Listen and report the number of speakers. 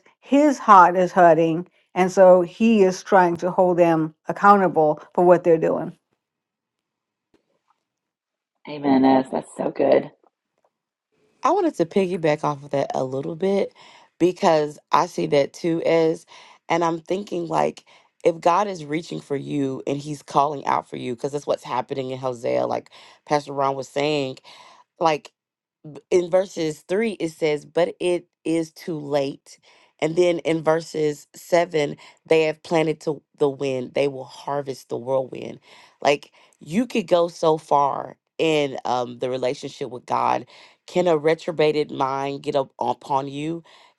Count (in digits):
3